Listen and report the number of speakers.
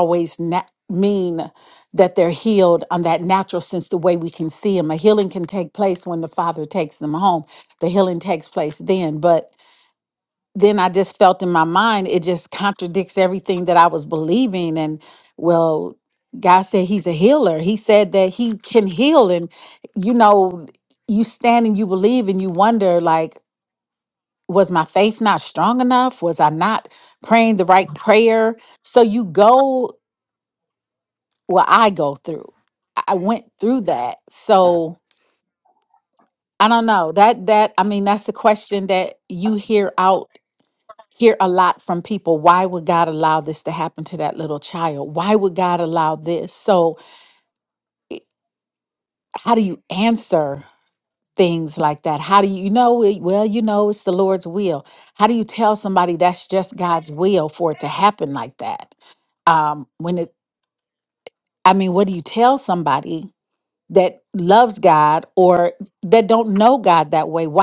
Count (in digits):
1